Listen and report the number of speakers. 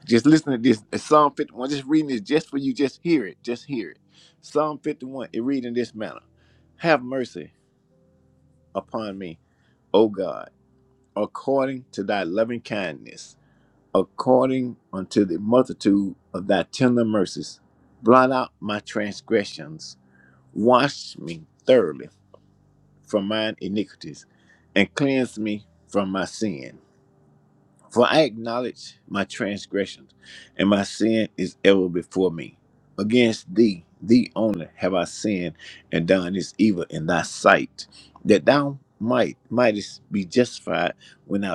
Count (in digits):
1